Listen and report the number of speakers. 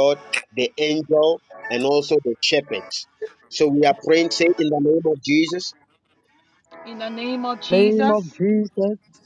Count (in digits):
3